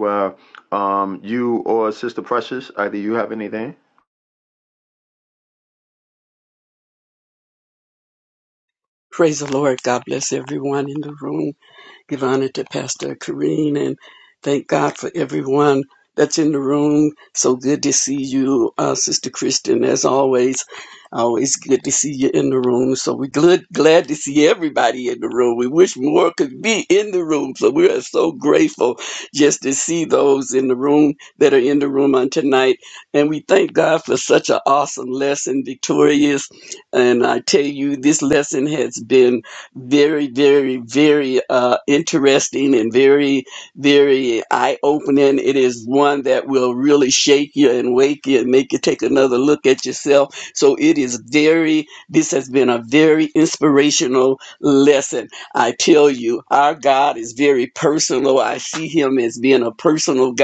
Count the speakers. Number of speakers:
two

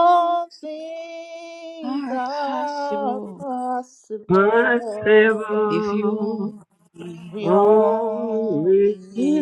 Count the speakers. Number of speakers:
three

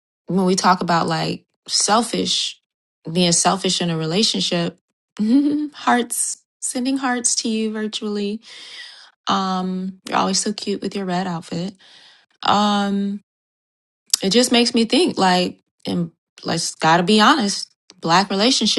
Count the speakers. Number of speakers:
one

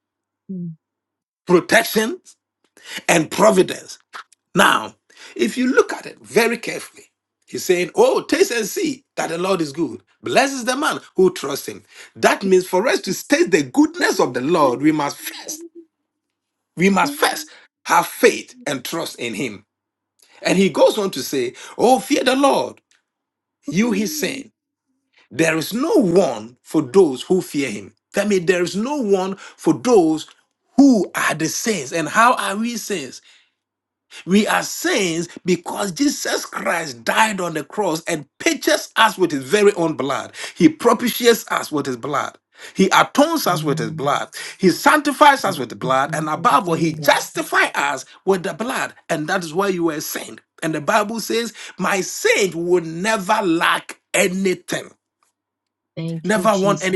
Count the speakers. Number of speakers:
two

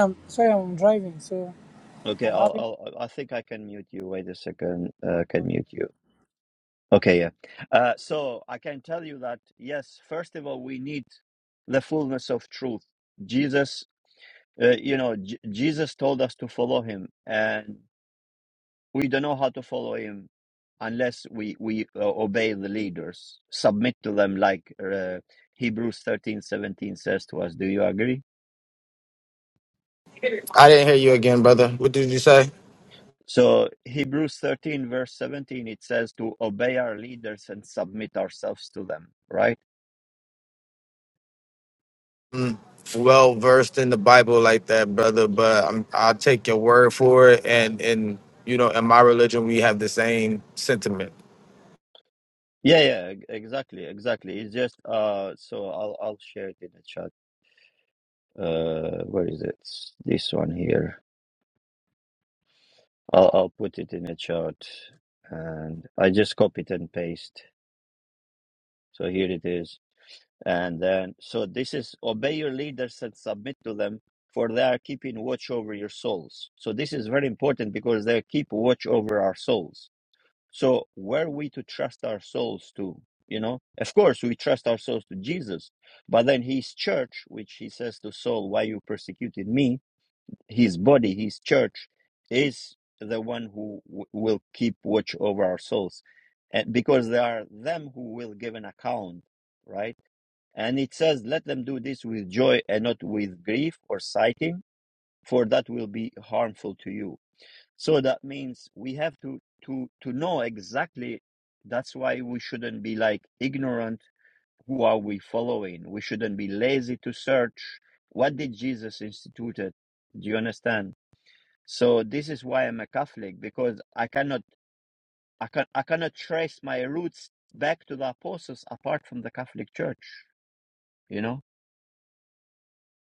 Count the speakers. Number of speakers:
three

